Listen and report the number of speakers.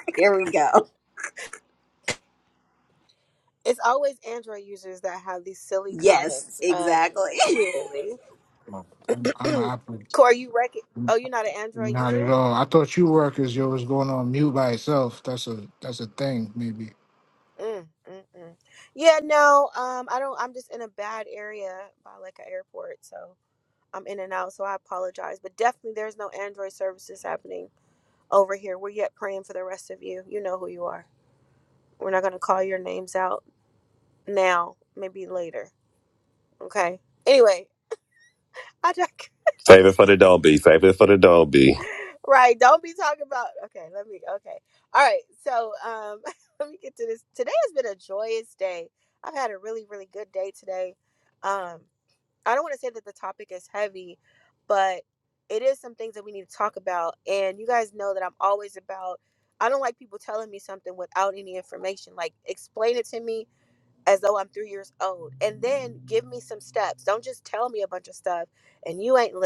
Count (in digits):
4